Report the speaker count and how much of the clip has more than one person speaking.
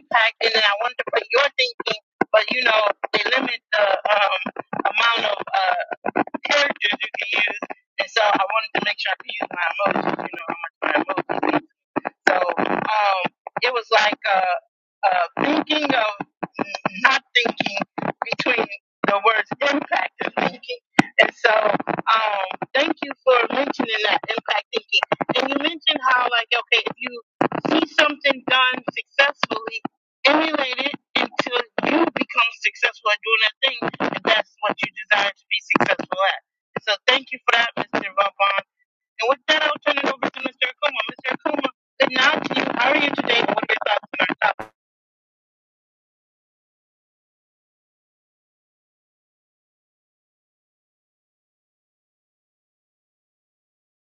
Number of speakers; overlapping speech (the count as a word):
one, no overlap